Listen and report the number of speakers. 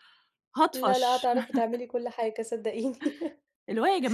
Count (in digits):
2